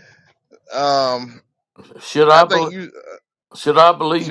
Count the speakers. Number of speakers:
2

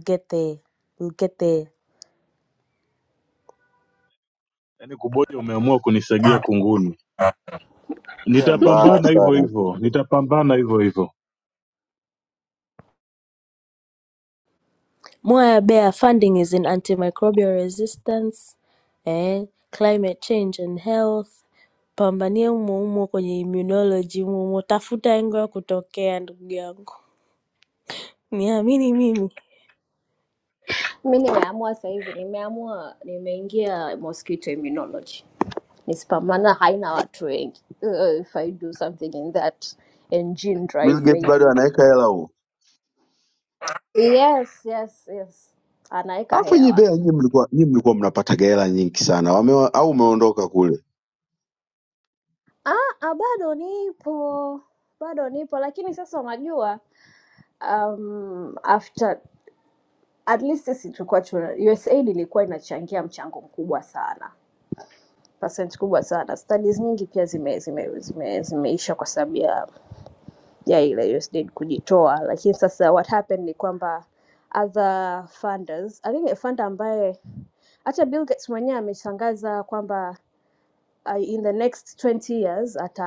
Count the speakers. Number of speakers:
4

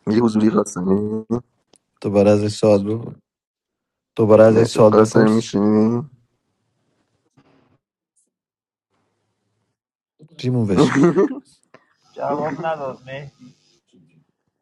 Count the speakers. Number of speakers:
3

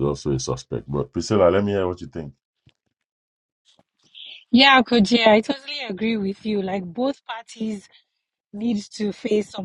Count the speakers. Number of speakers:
2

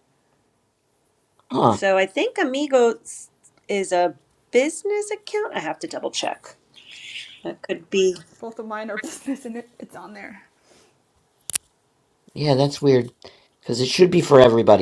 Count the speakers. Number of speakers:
3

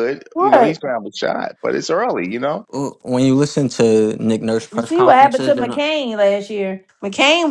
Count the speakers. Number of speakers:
3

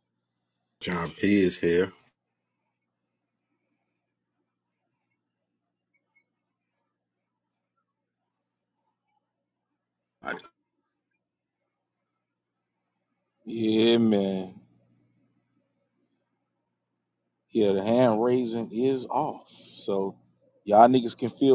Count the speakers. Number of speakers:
2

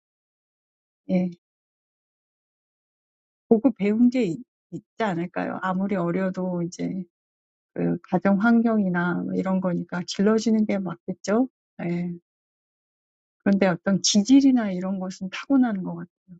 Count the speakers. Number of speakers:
1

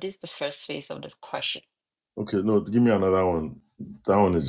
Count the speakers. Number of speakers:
2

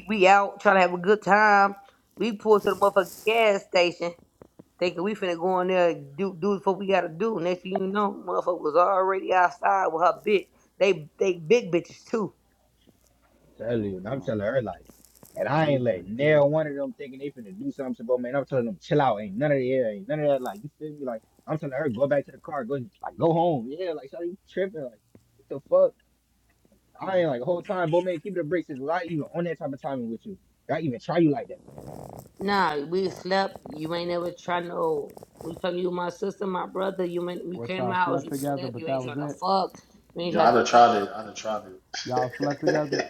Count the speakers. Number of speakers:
4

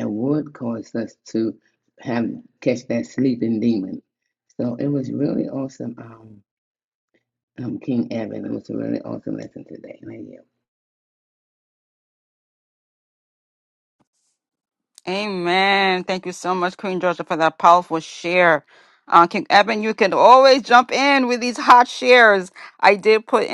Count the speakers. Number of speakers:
2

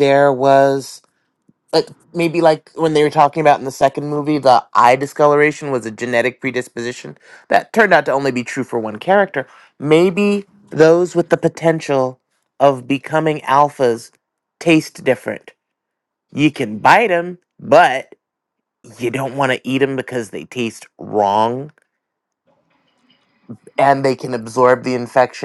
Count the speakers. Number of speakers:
1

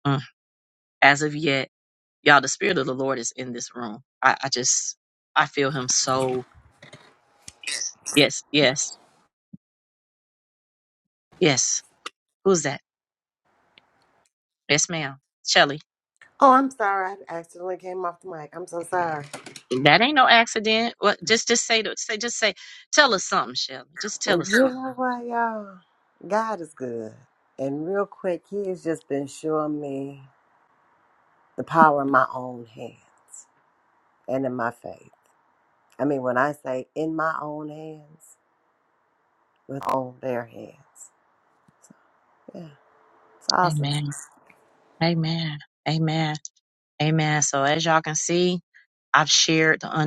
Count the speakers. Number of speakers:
2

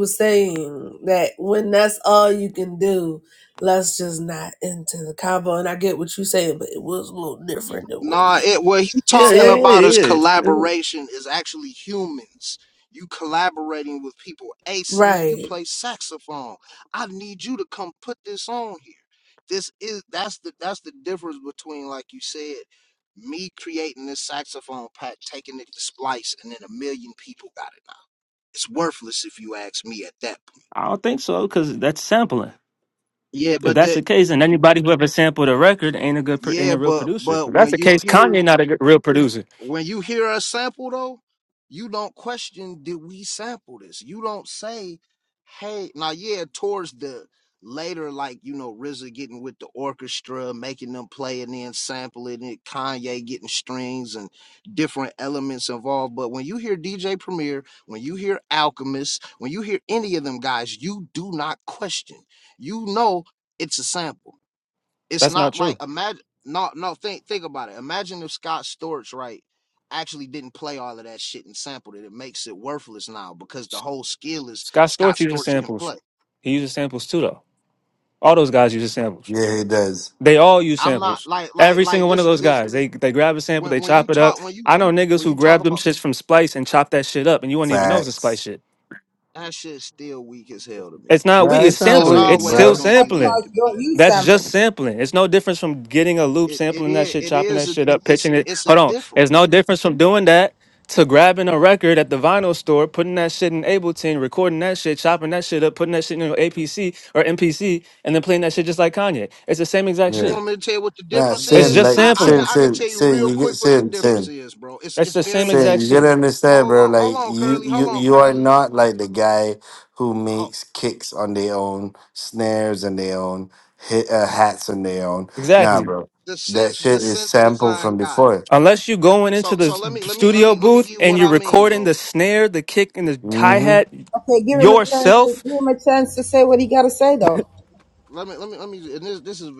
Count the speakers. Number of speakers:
5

